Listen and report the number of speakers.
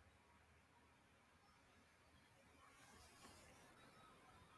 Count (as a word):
zero